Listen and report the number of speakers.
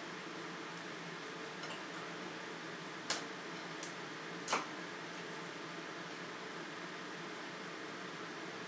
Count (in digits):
0